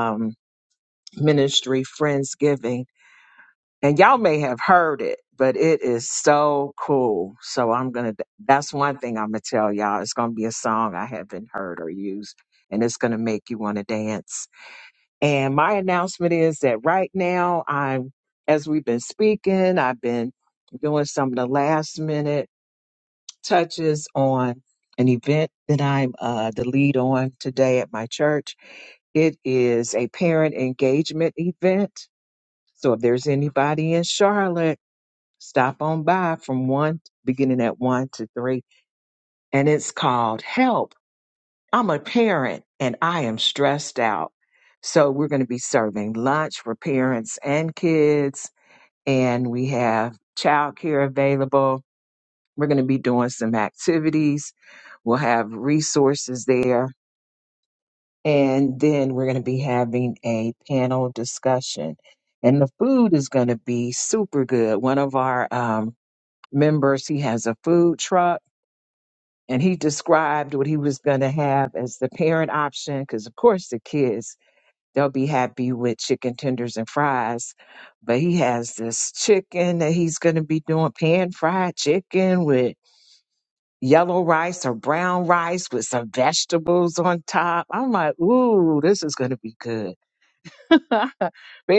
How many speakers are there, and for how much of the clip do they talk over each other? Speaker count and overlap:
one, no overlap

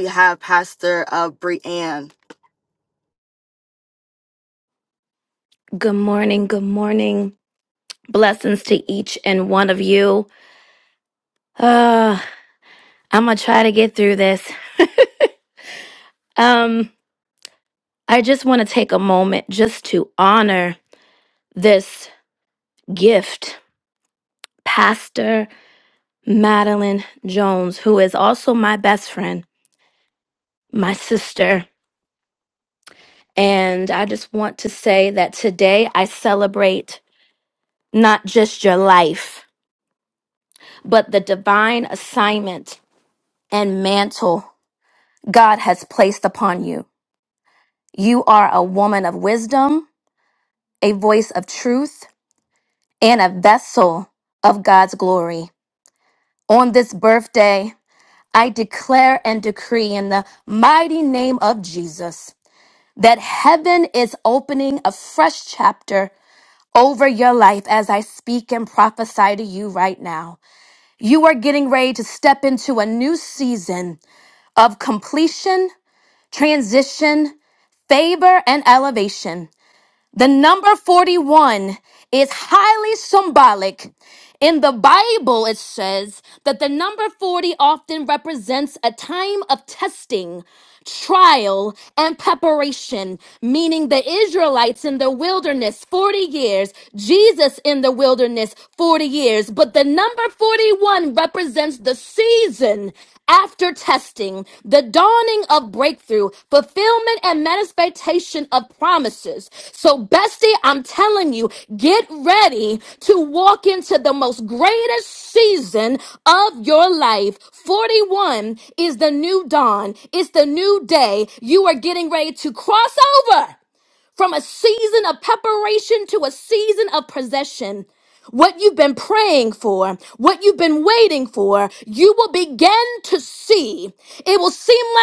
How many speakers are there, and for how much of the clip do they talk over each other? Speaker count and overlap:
two, no overlap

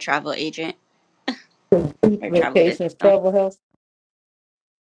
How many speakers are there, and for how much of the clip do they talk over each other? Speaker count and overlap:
two, about 19%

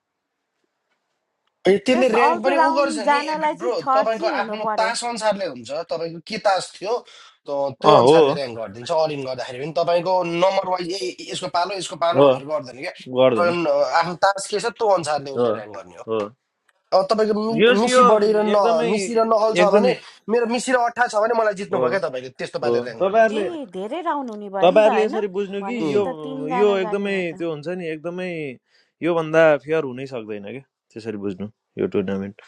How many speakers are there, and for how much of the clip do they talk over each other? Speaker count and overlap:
three, about 25%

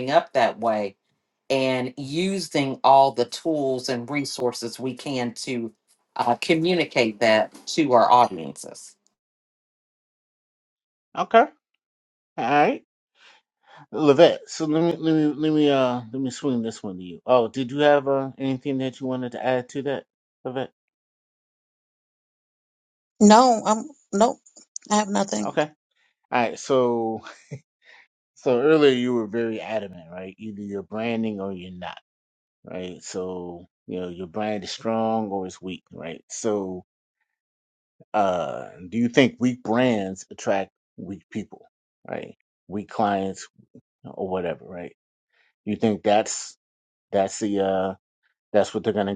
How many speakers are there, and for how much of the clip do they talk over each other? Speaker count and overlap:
three, under 1%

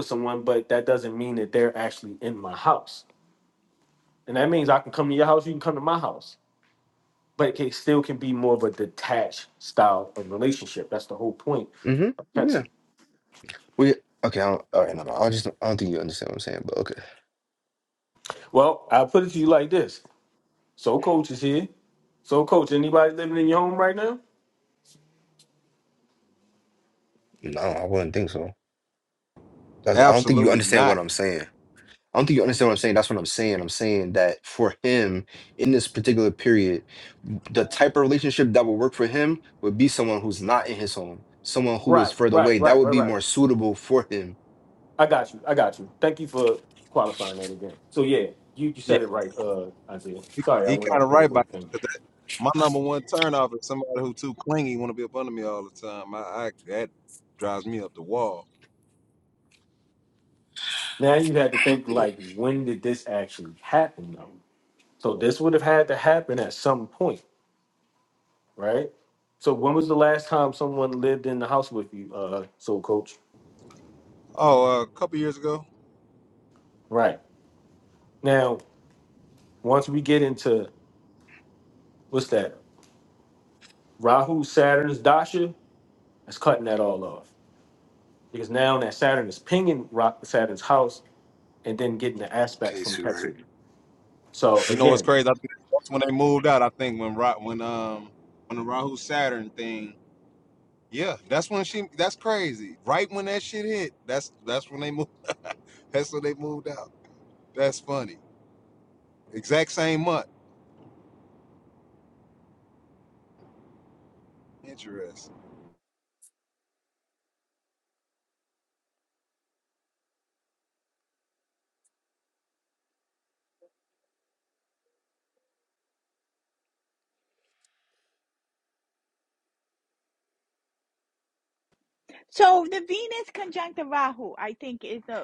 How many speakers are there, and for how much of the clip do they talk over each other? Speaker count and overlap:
four, about 4%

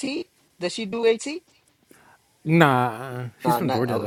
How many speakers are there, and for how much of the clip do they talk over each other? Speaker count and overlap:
two, about 16%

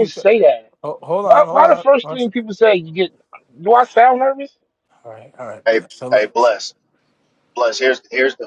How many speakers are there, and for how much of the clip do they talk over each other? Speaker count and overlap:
three, about 25%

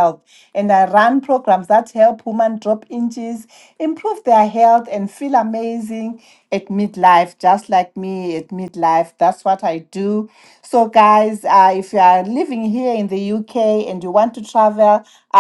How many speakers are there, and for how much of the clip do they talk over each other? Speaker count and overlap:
one, no overlap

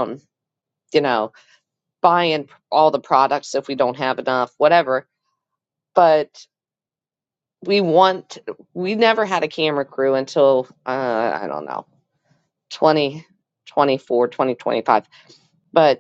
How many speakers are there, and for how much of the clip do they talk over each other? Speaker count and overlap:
one, no overlap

